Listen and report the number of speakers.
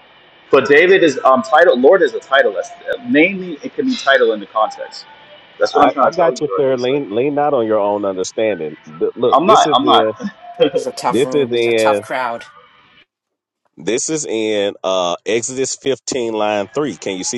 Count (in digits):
3